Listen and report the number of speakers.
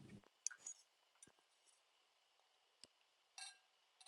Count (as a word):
zero